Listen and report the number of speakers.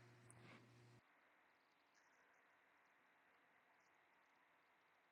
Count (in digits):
0